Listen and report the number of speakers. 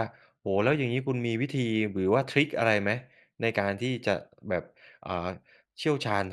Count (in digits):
1